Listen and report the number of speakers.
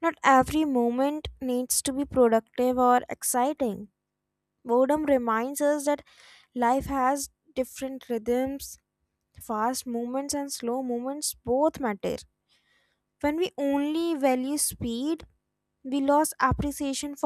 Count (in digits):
1